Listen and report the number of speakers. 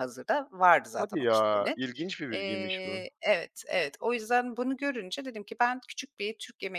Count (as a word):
two